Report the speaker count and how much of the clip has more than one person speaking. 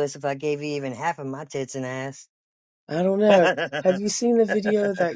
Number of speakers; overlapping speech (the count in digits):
2, about 4%